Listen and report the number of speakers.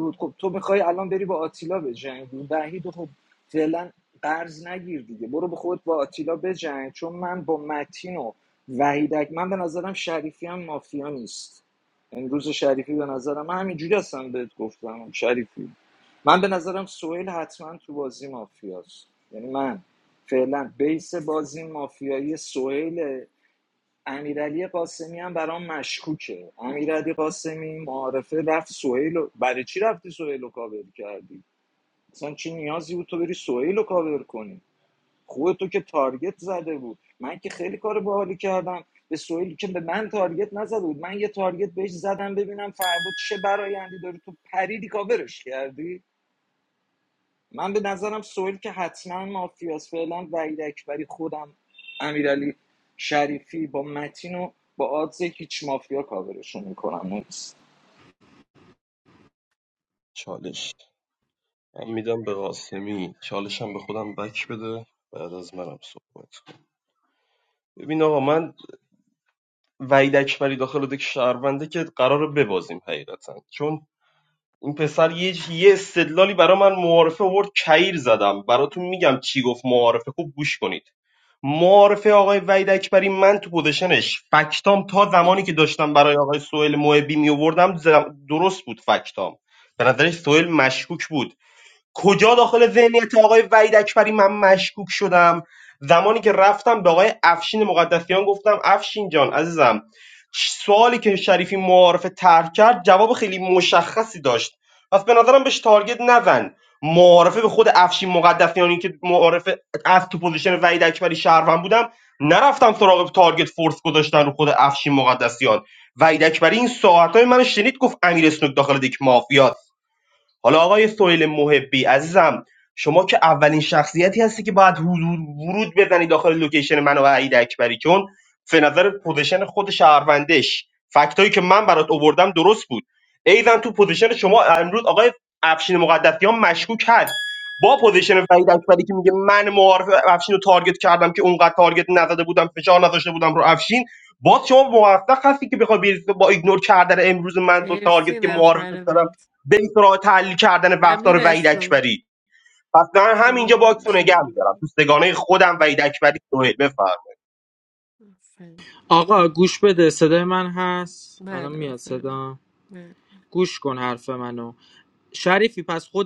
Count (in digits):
4